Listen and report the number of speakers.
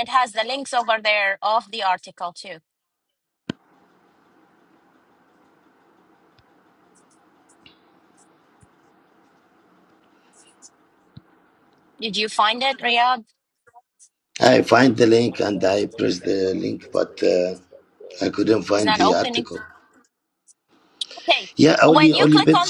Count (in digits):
2